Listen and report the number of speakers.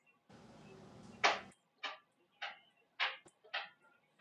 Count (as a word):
zero